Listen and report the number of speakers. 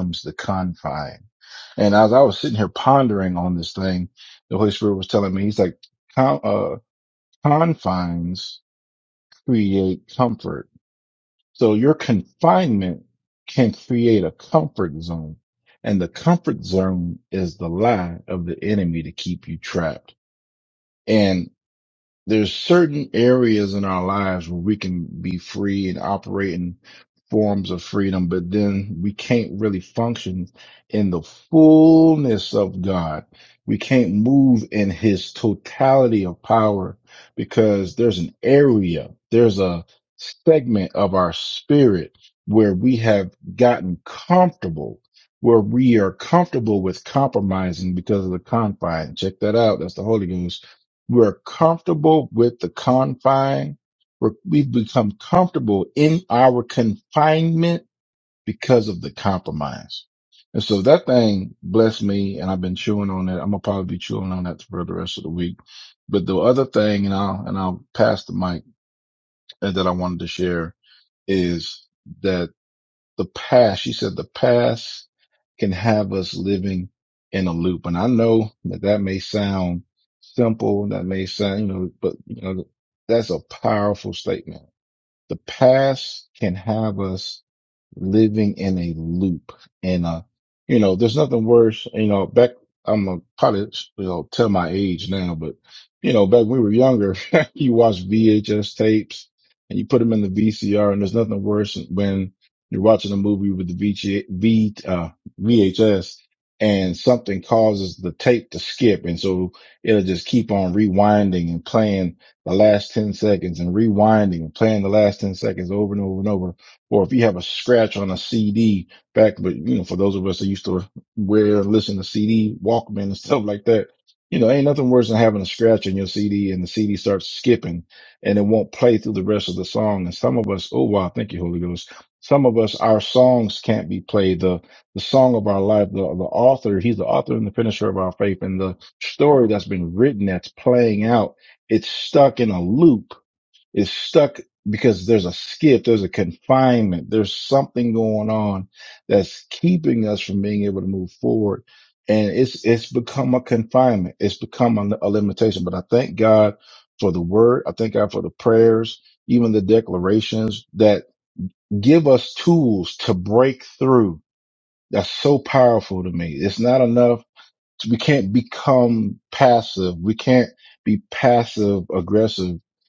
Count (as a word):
one